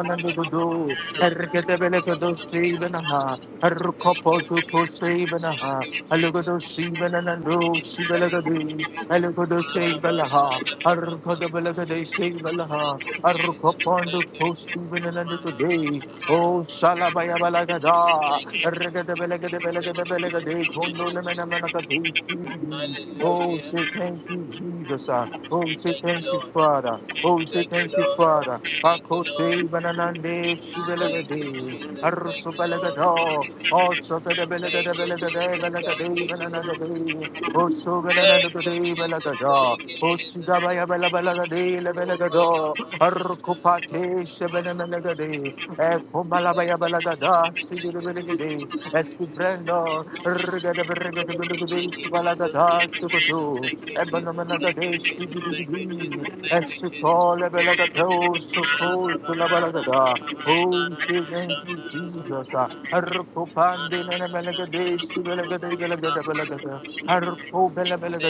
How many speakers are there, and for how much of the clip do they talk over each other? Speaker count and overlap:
2, about 38%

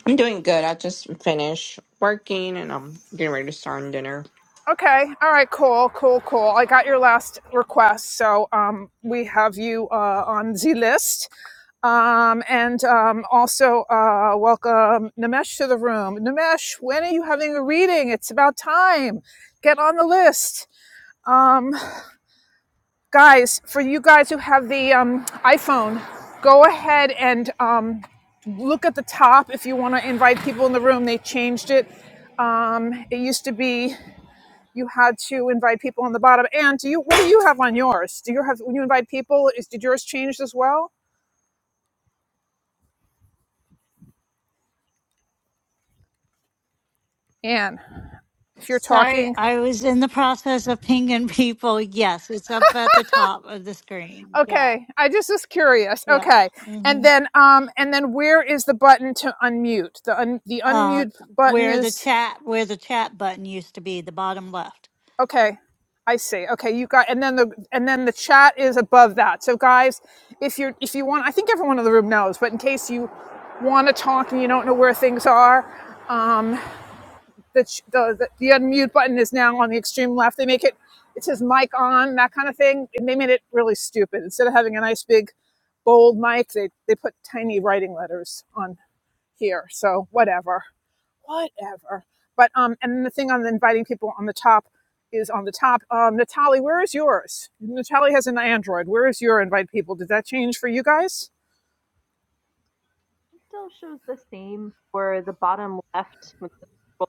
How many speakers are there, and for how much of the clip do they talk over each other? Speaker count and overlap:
4, about 2%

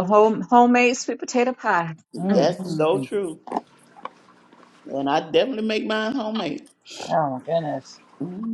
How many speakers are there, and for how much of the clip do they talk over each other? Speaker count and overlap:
3, about 9%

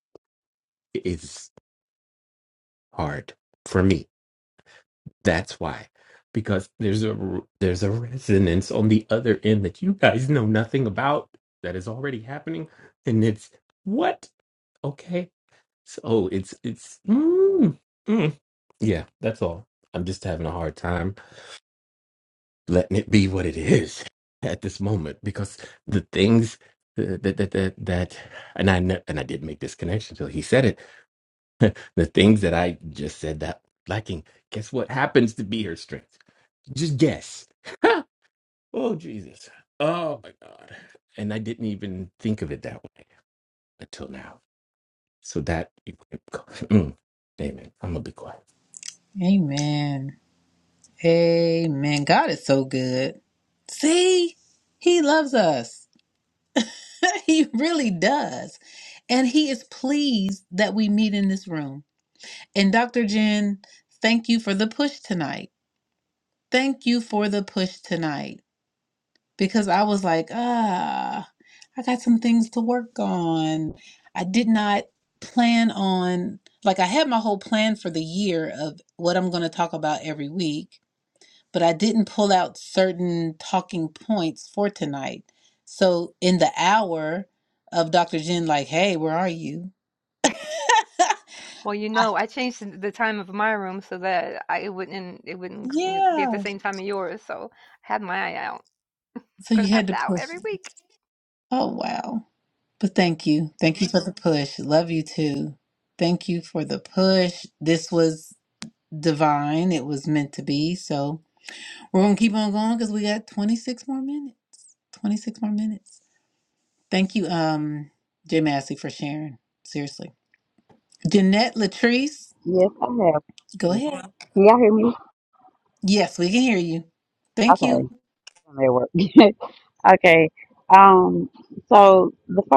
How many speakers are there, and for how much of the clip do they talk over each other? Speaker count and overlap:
4, about 1%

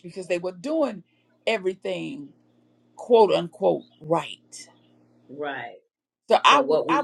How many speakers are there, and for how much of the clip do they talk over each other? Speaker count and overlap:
2, about 8%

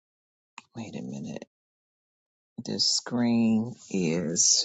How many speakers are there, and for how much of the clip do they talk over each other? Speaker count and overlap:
1, no overlap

